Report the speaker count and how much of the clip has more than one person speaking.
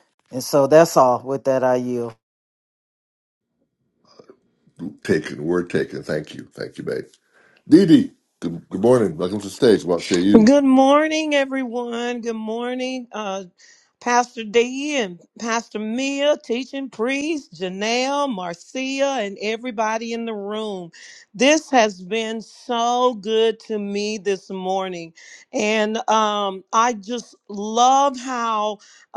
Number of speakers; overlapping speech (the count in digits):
3, about 1%